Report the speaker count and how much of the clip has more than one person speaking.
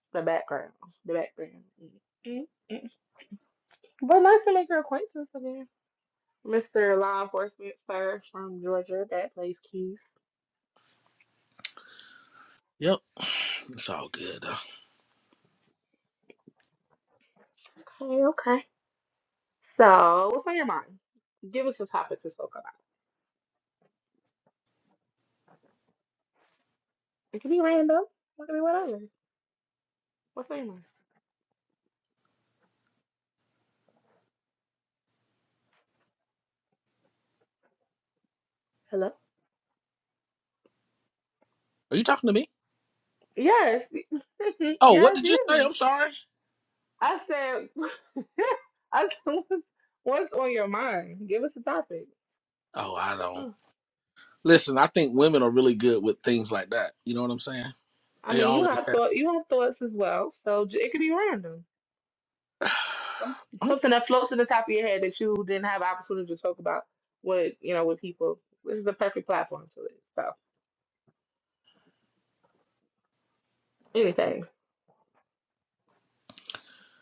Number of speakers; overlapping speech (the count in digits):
2, about 2%